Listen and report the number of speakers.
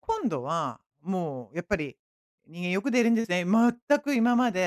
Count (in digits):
1